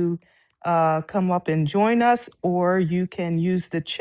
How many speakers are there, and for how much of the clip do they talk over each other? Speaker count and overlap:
1, no overlap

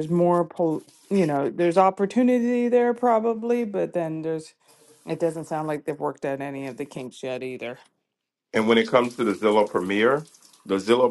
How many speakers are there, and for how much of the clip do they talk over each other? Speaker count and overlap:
2, no overlap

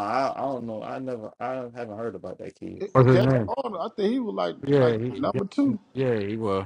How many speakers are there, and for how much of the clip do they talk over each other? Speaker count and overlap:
3, about 18%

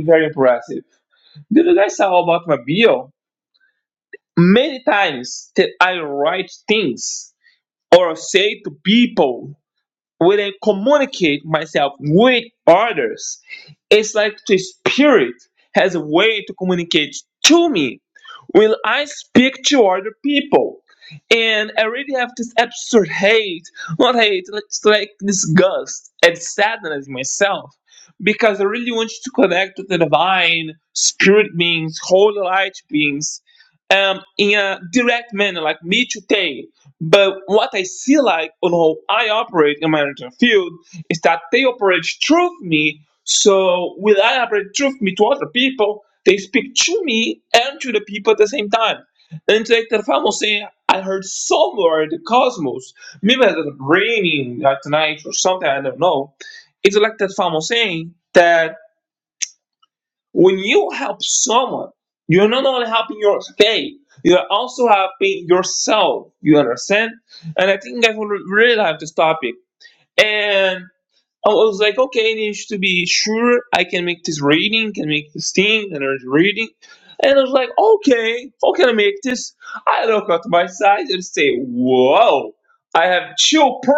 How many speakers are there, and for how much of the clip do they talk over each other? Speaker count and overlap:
1, no overlap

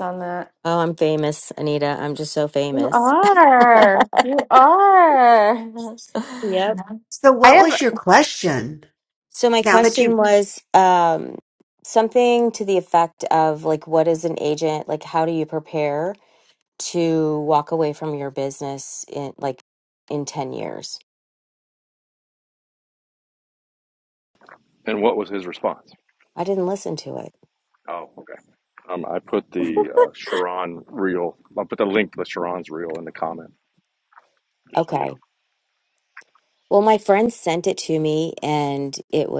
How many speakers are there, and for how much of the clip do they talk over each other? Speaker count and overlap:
4, about 4%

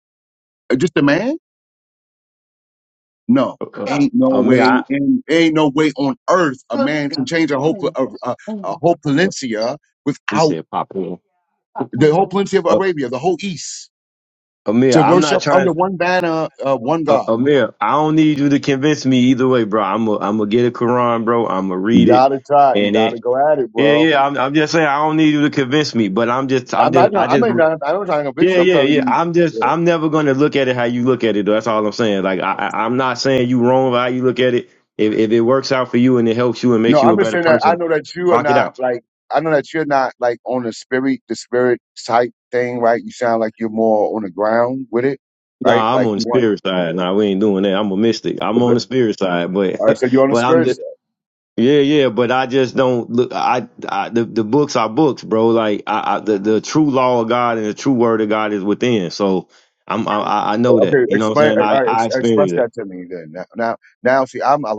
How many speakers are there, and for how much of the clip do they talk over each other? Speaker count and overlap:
2, about 15%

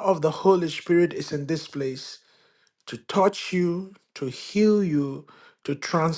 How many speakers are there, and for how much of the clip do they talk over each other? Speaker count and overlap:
1, no overlap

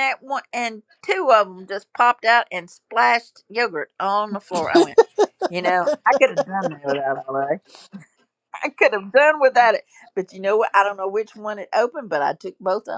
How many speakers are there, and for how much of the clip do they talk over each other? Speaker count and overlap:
1, no overlap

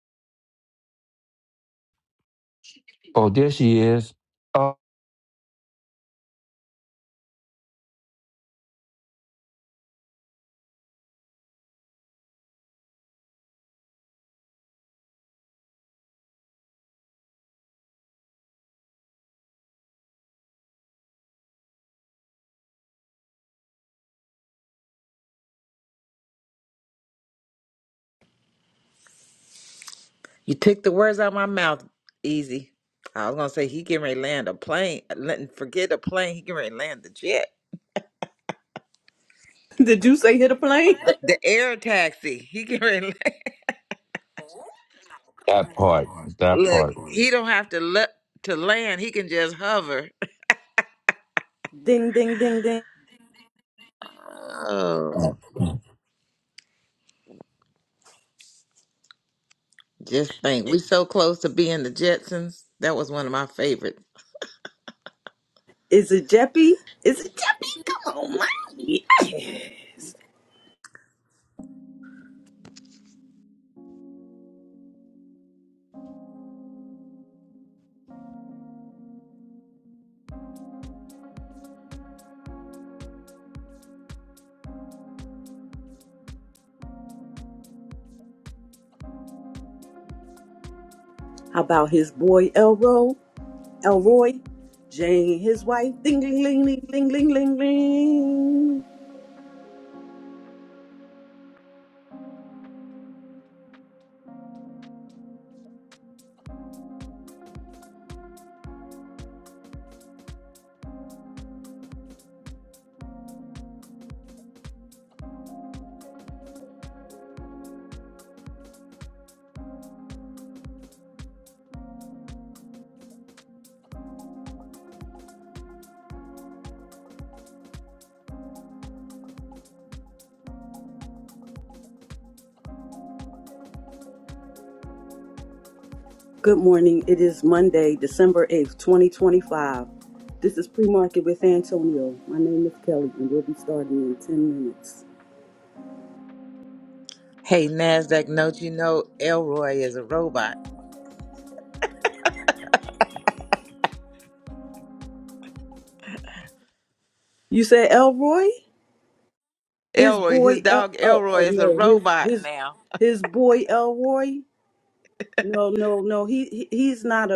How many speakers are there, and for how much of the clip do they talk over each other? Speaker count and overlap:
3, about 2%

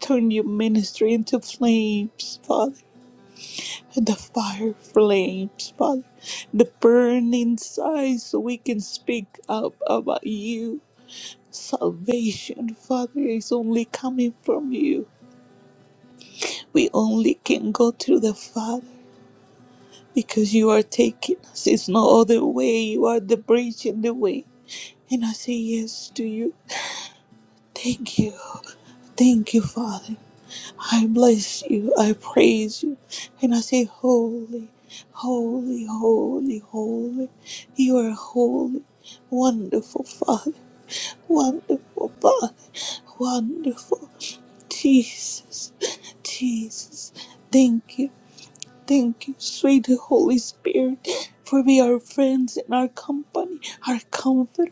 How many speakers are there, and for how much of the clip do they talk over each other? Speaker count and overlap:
1, no overlap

